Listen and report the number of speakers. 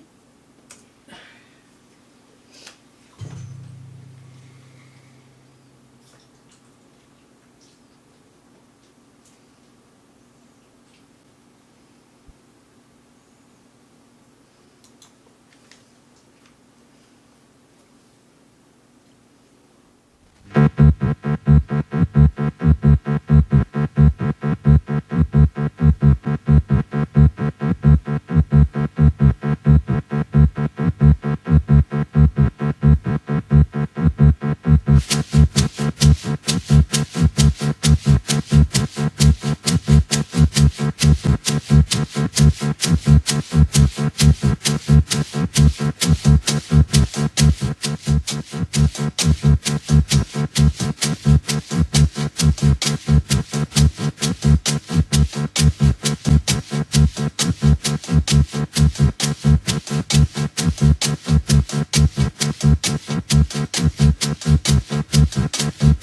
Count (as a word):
zero